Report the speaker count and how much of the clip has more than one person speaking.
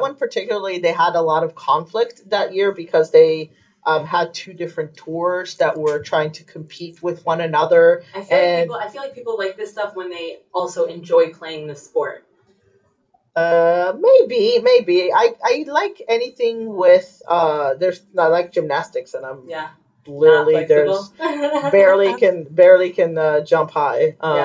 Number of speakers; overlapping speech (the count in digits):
2, about 8%